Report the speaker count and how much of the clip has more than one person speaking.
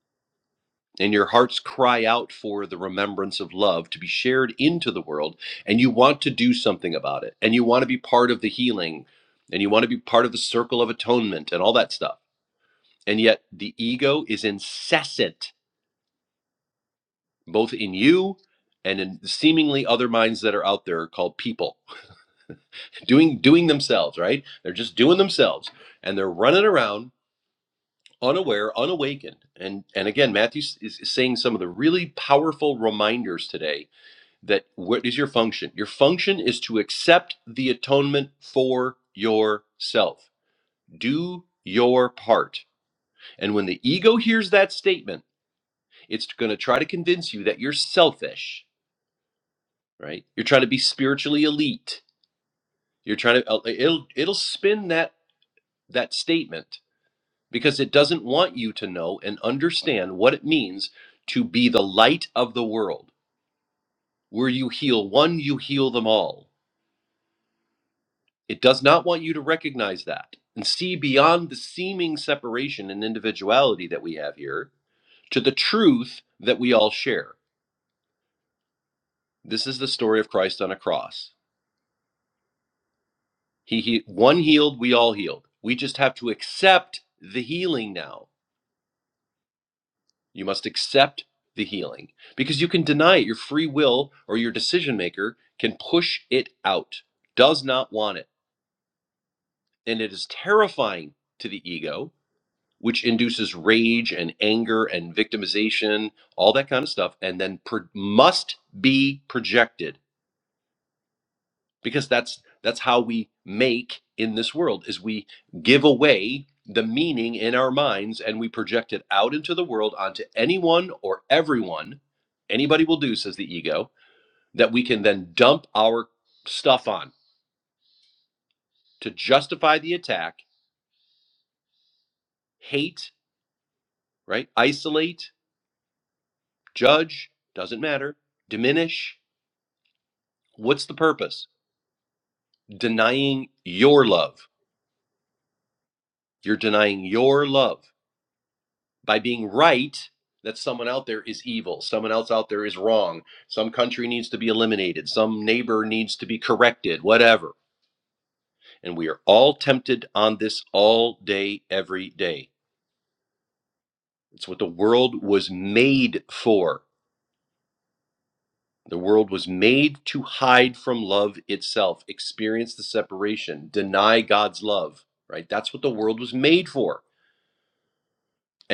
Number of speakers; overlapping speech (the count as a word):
one, no overlap